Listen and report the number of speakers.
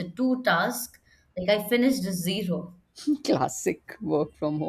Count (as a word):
two